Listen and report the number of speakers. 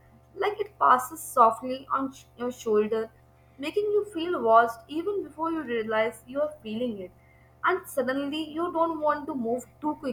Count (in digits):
1